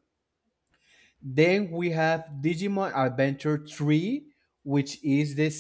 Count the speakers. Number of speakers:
one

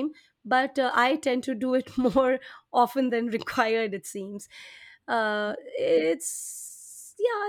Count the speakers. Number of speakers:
one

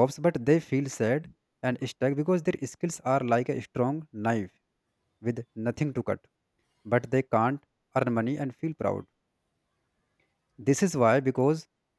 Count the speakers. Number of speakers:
one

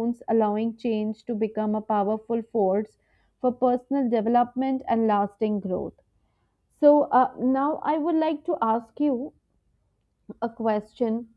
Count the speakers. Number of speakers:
one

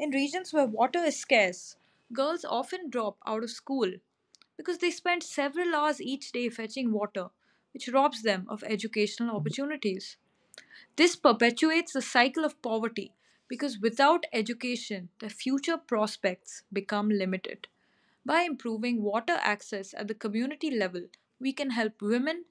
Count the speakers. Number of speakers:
one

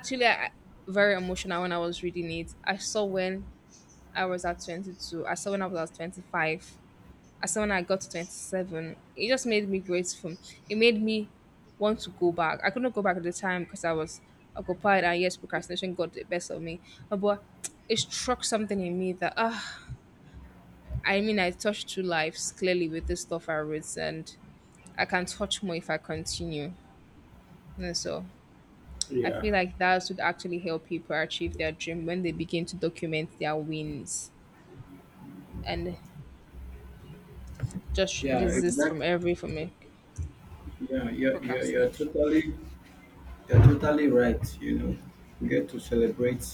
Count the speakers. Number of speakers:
two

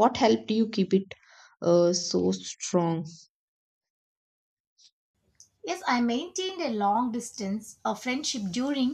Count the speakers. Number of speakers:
two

